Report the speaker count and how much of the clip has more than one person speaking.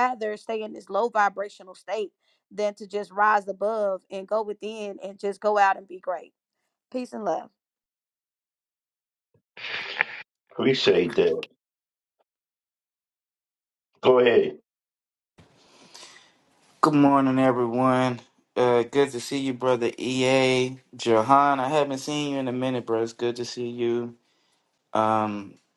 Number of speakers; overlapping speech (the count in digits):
3, no overlap